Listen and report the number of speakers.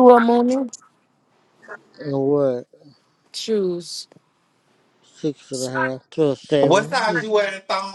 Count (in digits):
3